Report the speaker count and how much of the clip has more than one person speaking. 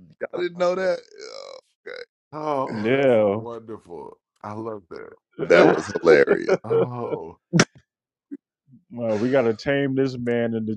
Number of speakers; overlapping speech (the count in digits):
3, about 7%